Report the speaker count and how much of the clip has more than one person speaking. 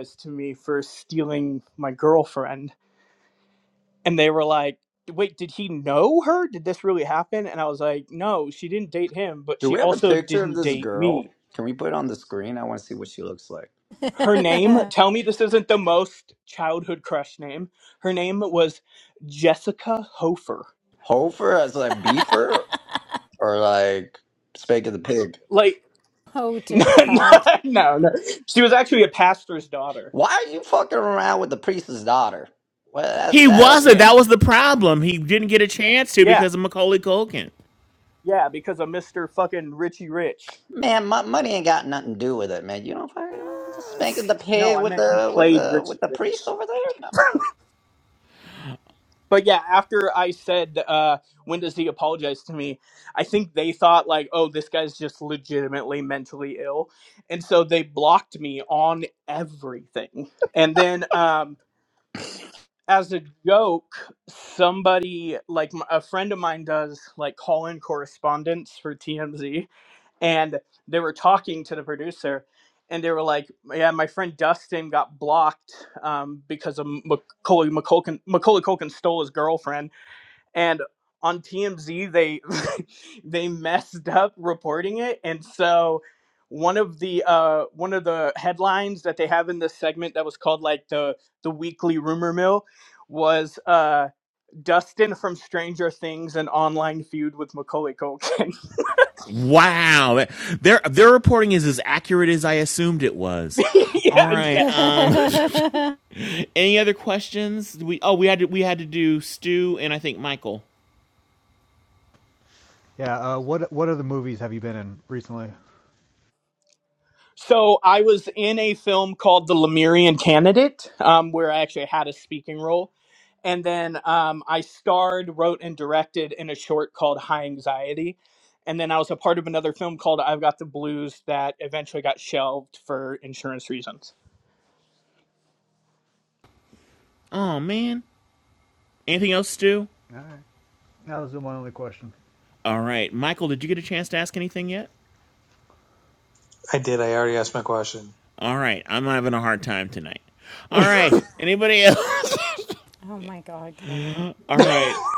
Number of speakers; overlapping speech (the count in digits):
6, about 4%